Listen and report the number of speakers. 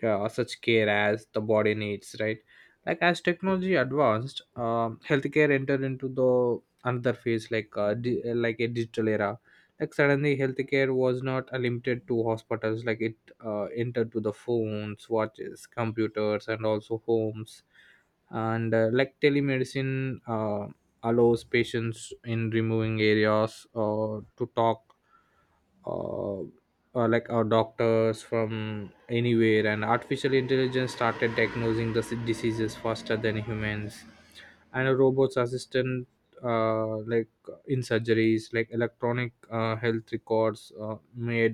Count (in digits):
1